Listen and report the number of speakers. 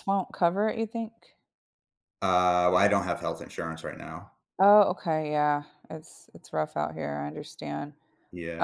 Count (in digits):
2